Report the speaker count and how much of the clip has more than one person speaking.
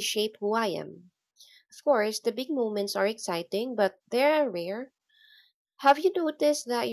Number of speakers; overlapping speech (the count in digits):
1, no overlap